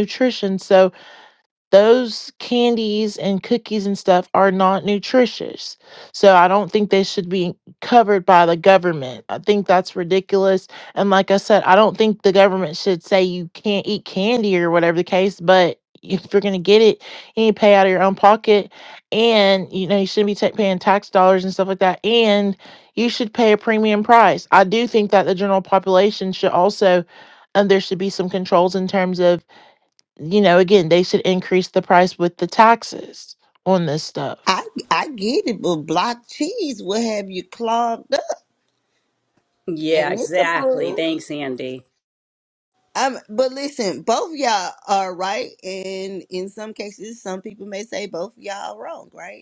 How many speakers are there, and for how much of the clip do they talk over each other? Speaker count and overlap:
3, about 2%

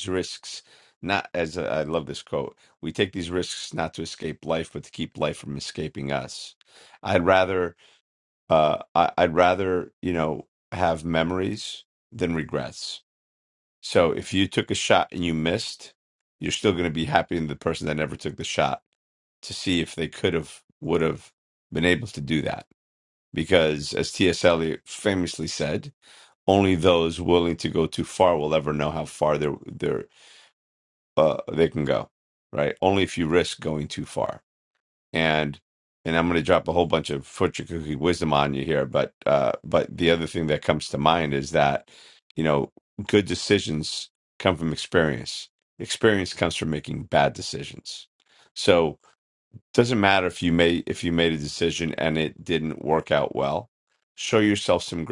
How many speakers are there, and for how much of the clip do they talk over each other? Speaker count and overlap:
1, no overlap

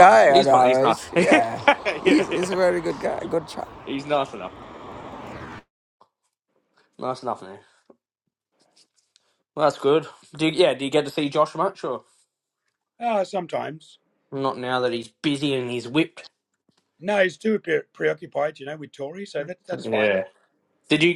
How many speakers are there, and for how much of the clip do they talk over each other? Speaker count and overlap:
3, about 10%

